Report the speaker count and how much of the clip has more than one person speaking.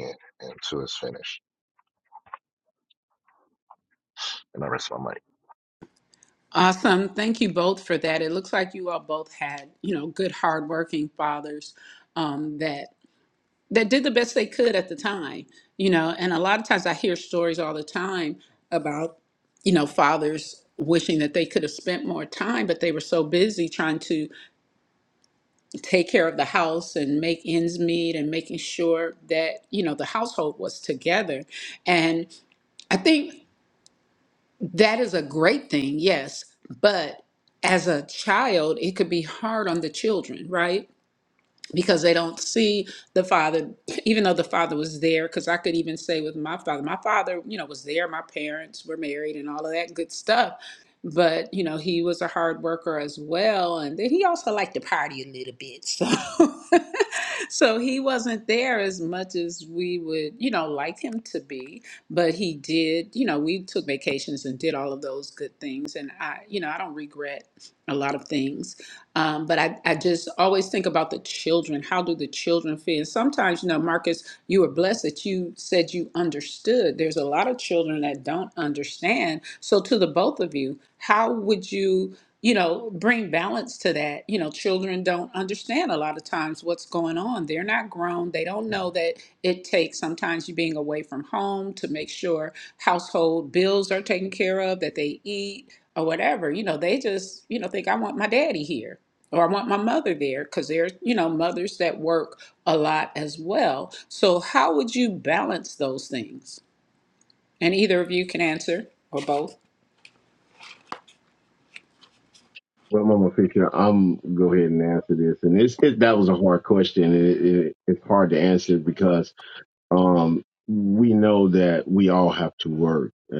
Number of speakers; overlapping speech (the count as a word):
three, no overlap